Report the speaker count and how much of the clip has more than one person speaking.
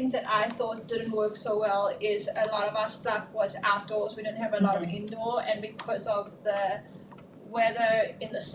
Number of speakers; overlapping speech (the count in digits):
1, no overlap